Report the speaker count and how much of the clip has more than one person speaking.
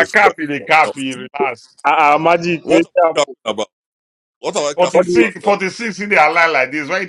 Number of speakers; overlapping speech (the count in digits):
3, about 25%